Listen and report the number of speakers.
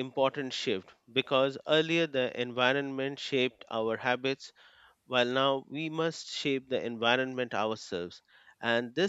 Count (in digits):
1